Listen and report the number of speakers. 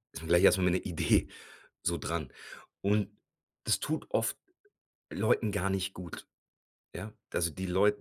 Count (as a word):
one